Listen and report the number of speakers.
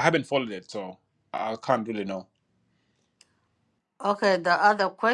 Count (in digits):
2